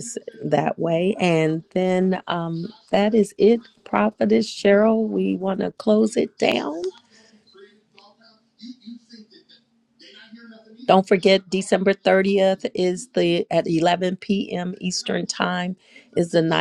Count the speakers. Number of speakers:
1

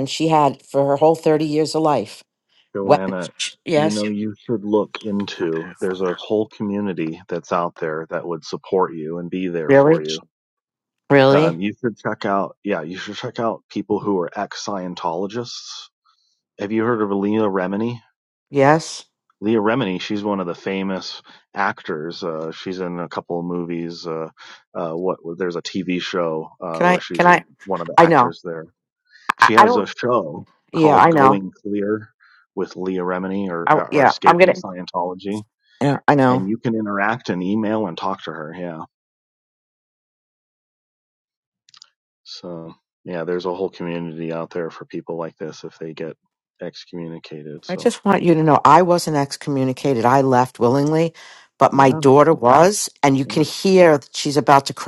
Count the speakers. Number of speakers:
2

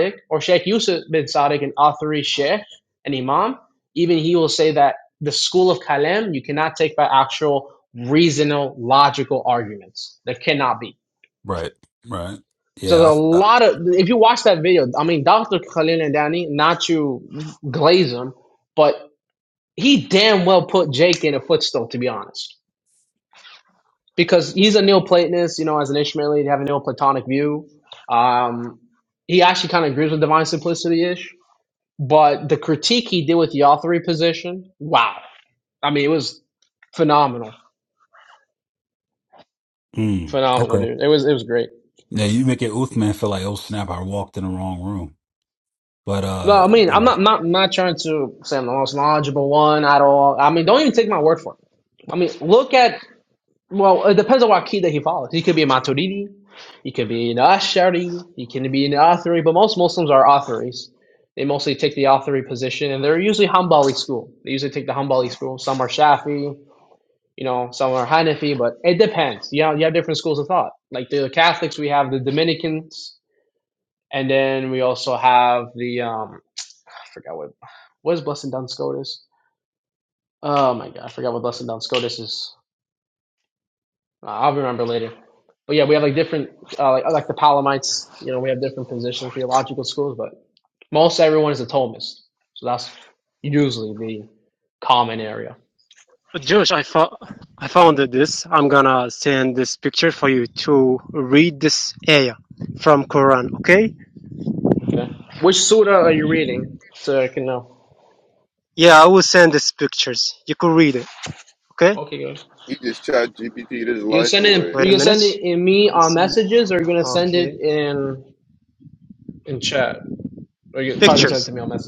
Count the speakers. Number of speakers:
4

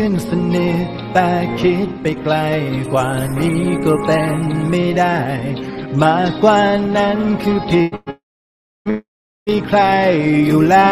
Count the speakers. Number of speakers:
1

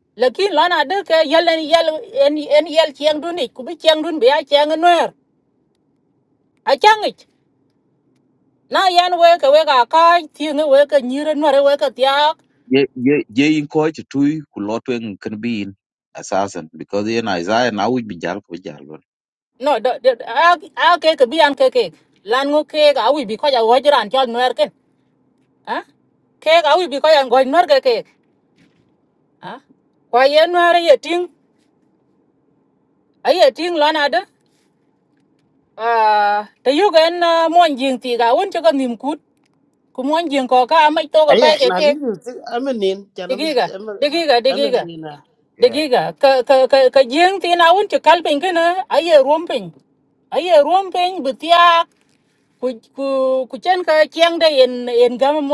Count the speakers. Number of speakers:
3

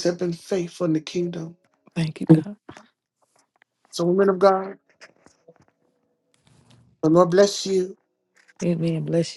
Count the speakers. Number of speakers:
2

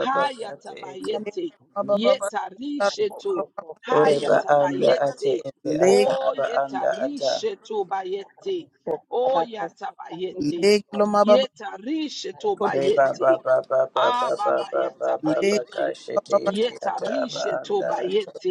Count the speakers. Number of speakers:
3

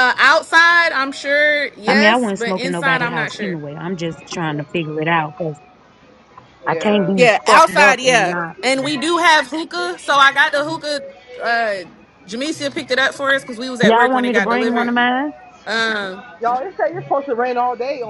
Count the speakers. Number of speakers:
3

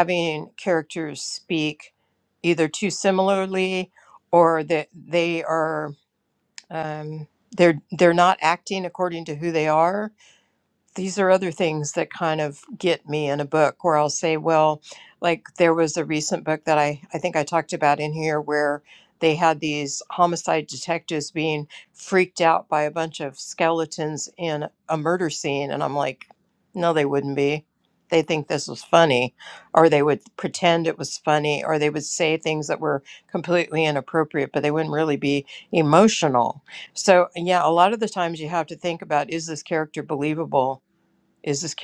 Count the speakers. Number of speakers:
1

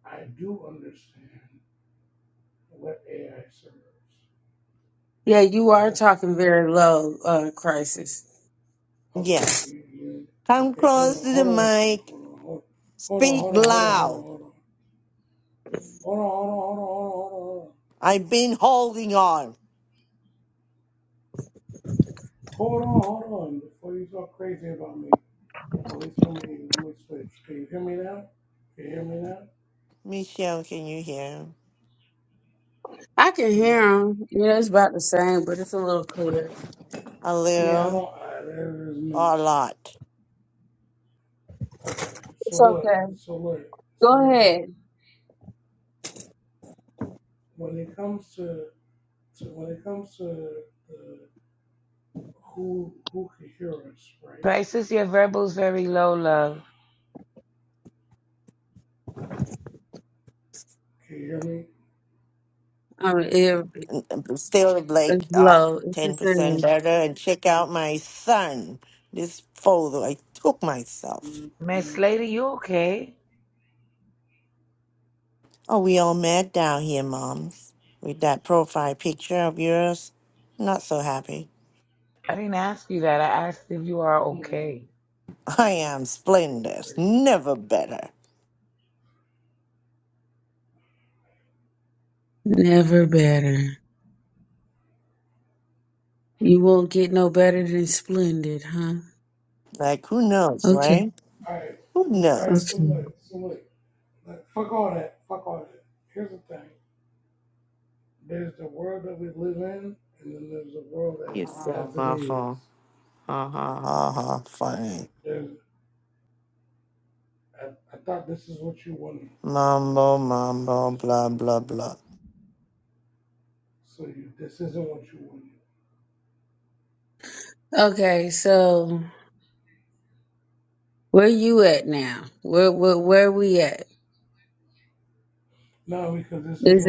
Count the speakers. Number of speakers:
4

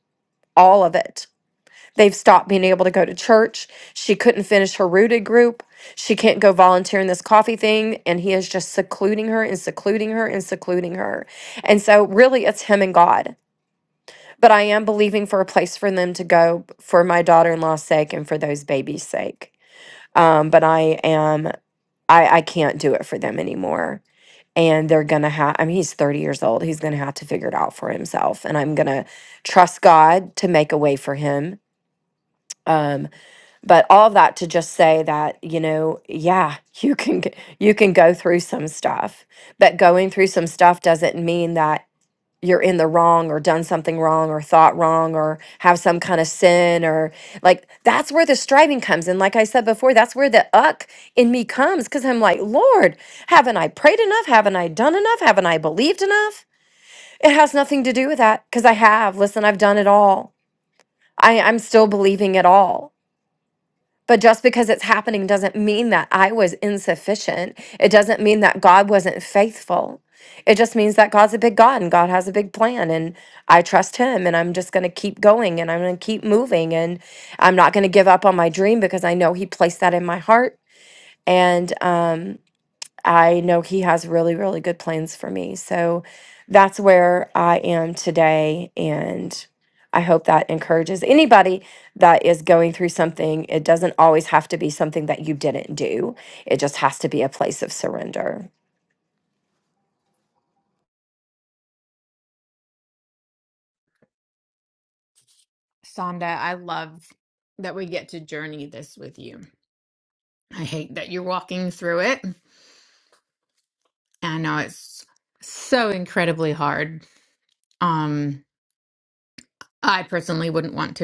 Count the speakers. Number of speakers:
2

